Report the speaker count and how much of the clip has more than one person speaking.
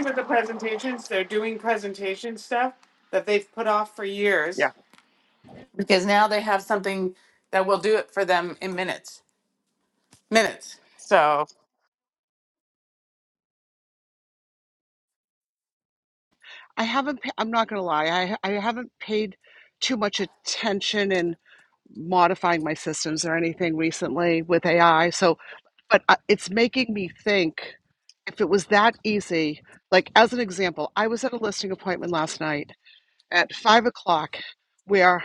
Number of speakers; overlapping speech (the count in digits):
2, no overlap